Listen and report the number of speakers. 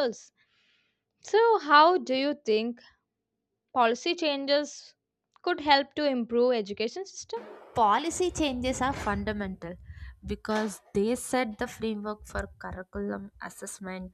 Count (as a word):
two